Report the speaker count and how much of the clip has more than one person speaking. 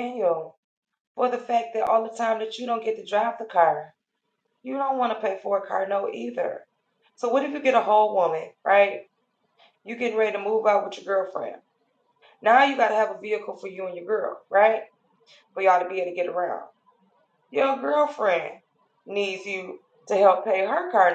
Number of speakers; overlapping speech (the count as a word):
one, no overlap